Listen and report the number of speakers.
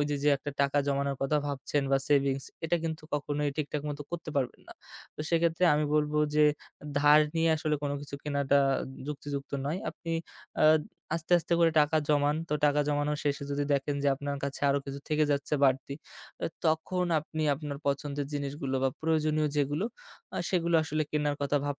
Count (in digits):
1